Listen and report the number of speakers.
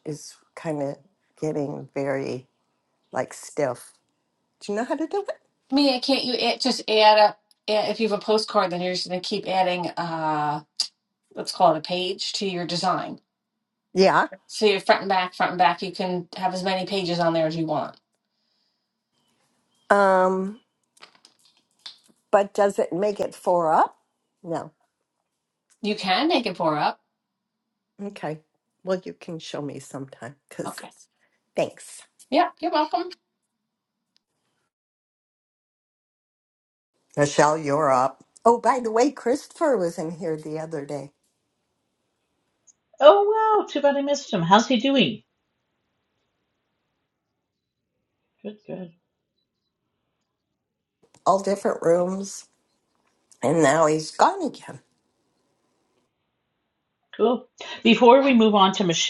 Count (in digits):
3